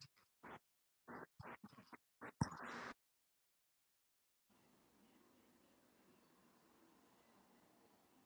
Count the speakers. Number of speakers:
zero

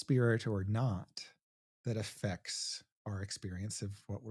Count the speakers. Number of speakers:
one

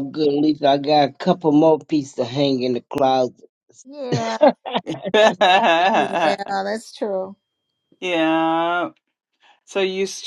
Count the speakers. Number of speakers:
three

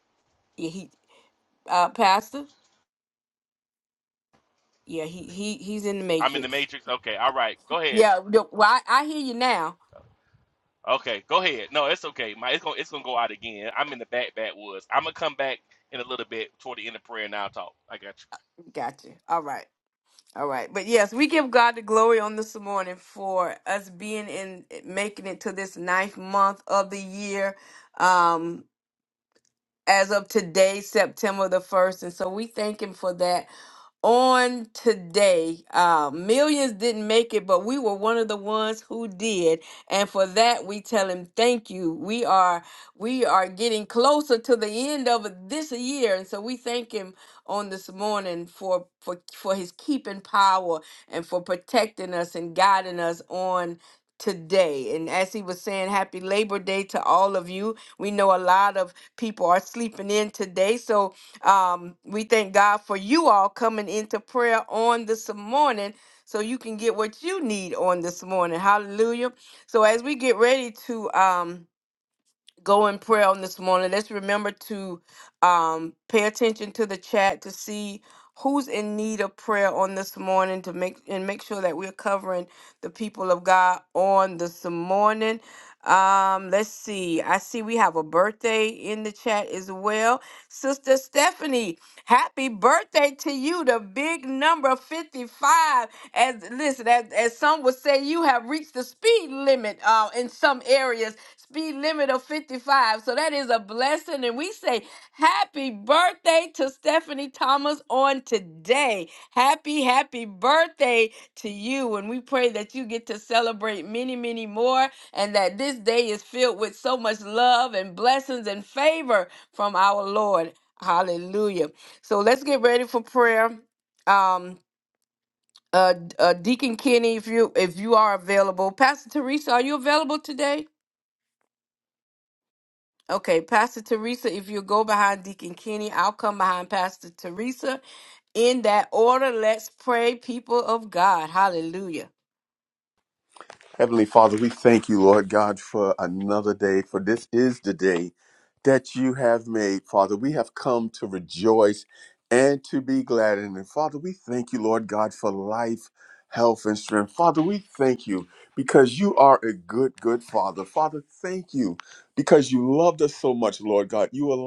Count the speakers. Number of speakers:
three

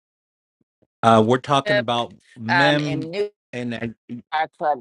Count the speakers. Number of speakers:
two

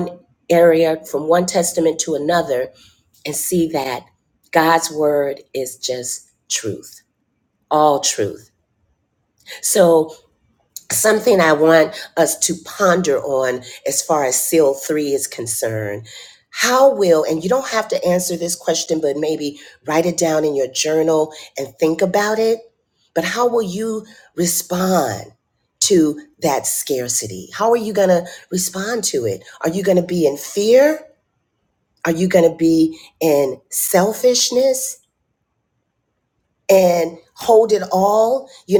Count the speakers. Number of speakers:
one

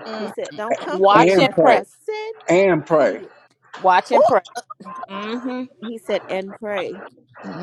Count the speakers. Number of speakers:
three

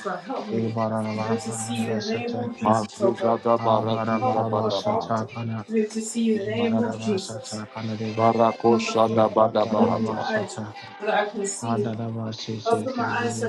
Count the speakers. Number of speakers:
three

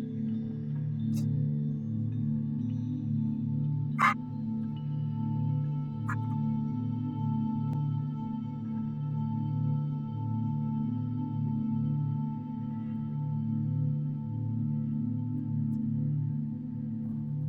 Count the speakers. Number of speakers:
zero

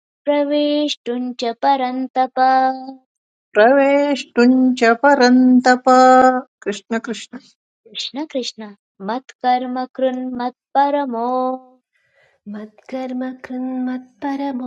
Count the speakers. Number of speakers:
three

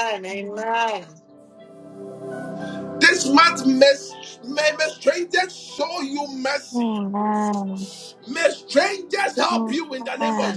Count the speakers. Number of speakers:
three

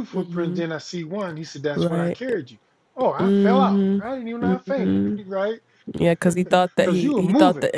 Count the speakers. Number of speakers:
two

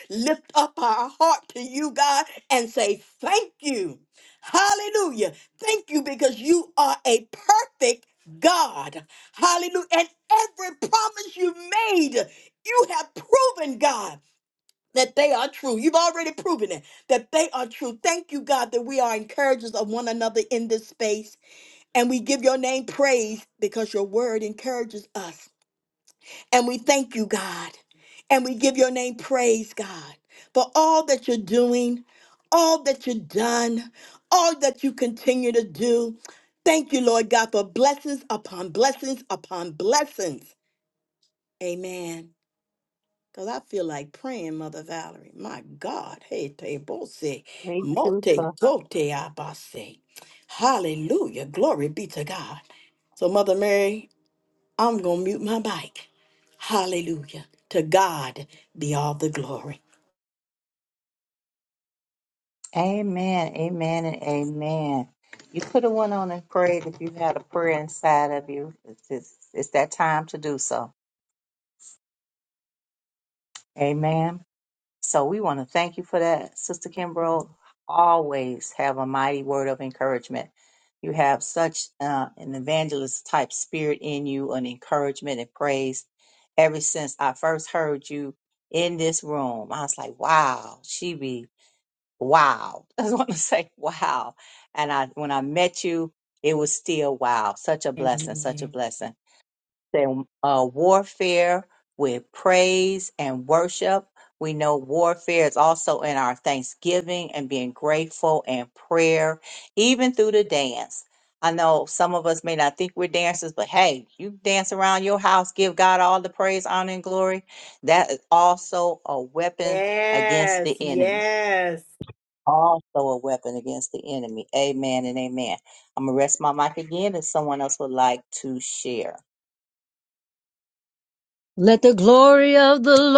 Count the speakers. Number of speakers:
three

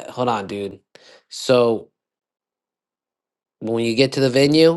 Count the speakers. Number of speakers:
one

